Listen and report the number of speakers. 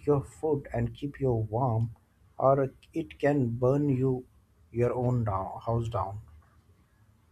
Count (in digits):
1